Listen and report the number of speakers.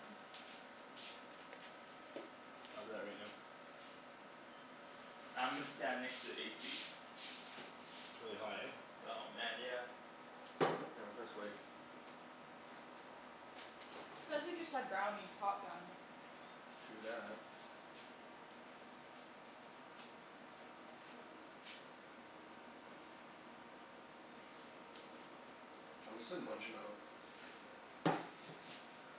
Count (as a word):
four